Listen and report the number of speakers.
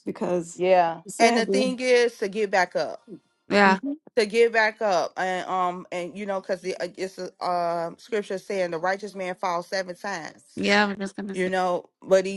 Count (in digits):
3